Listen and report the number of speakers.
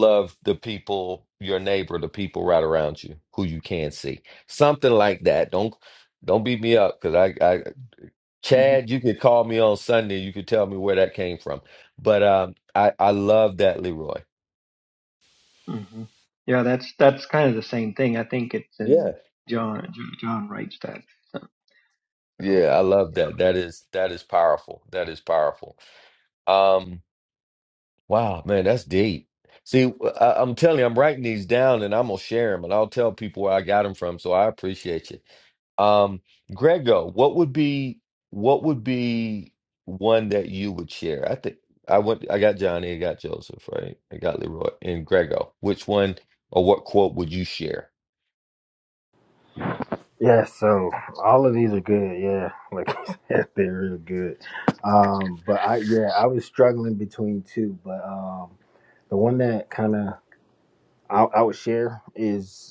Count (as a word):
three